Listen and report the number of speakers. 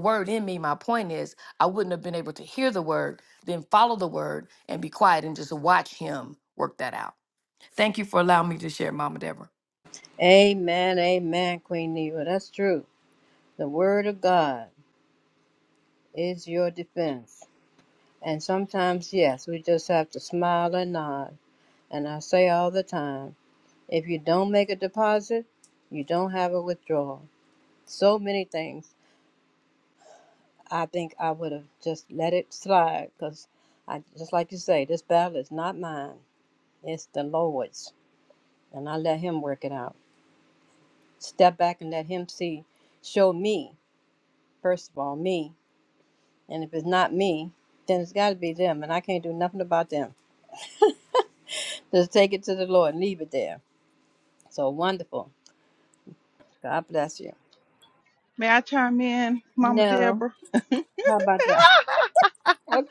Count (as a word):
three